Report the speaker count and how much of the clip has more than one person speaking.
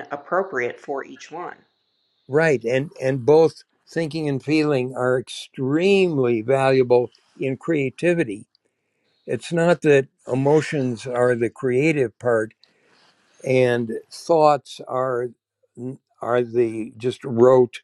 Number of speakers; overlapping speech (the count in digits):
2, no overlap